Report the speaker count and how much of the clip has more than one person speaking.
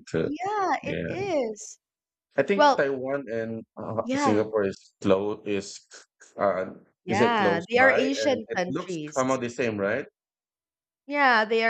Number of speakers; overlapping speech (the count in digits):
2, about 27%